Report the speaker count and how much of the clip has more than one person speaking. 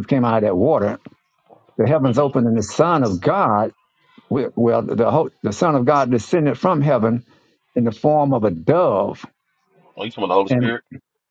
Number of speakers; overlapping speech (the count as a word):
two, about 4%